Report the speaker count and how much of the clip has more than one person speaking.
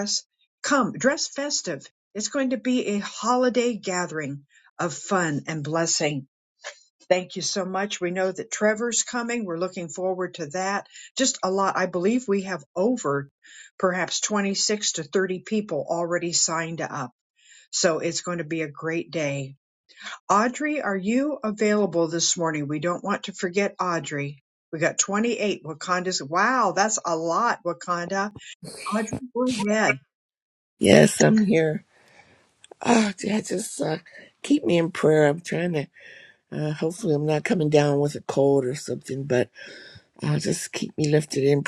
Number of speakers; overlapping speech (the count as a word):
two, no overlap